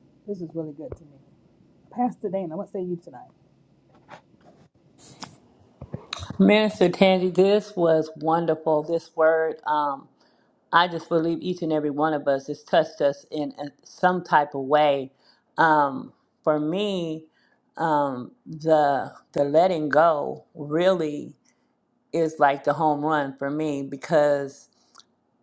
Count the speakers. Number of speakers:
2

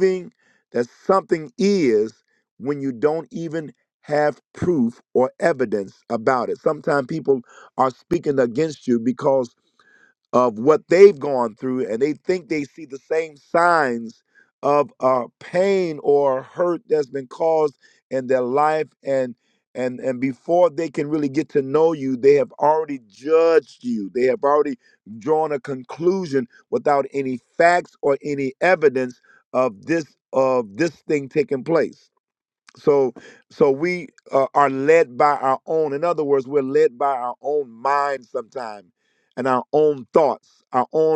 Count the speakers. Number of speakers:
1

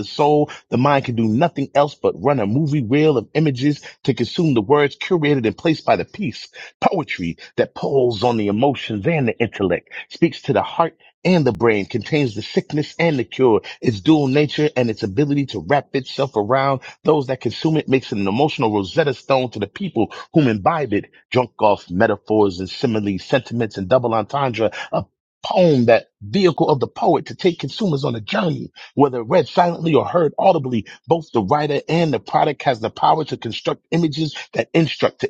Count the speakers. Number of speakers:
1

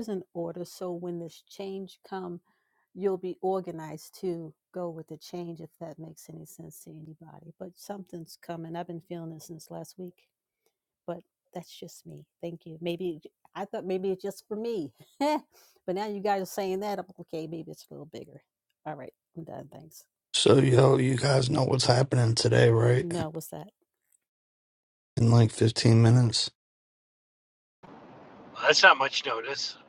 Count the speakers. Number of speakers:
3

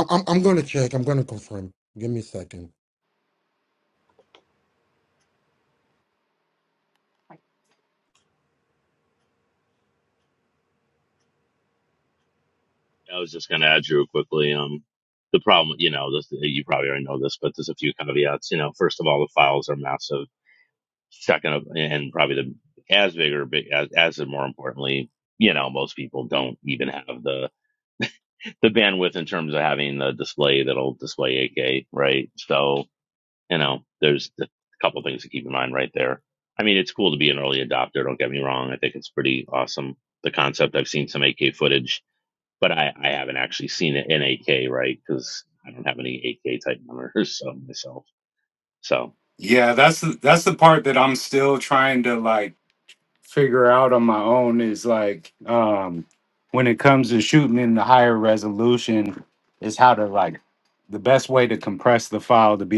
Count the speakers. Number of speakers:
3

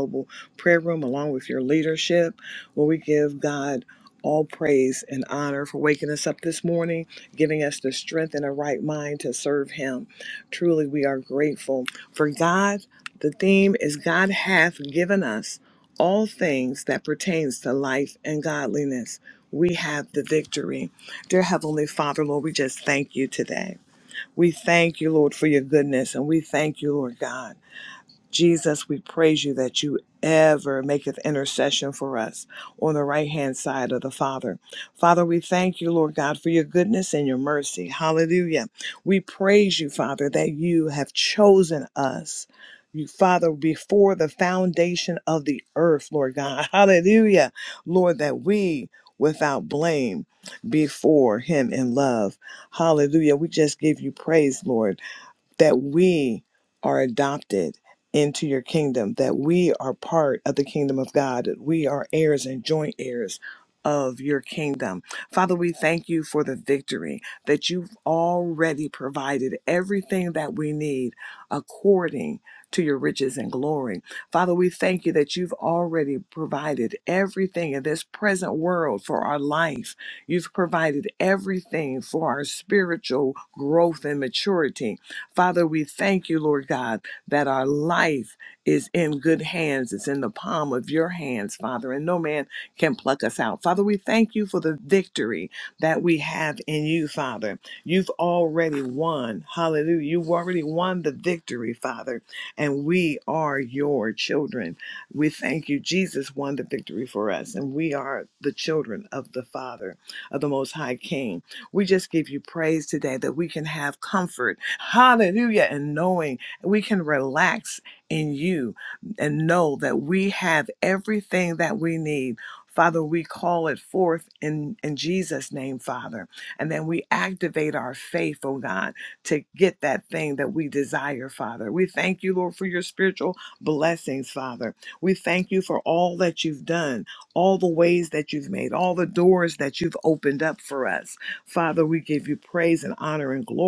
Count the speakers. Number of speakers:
1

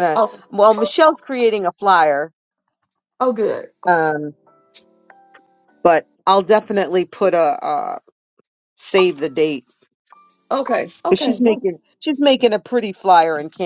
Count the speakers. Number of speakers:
2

